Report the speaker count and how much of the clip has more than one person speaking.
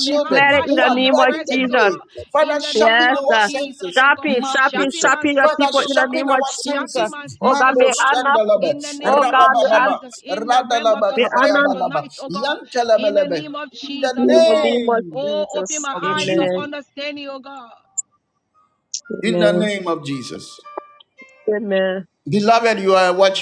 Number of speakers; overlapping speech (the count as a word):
three, about 65%